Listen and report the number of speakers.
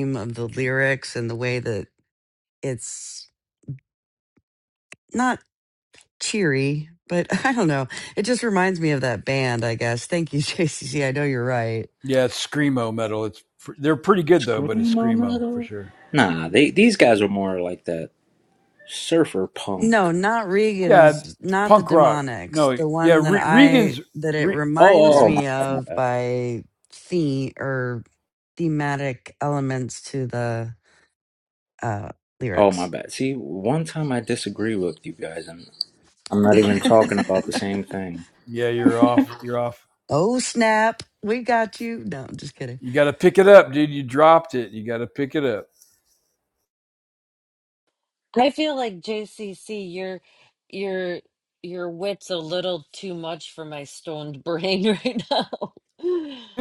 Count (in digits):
4